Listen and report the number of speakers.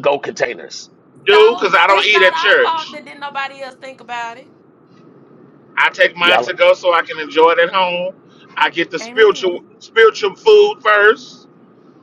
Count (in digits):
3